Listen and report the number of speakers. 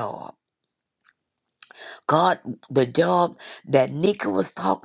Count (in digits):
1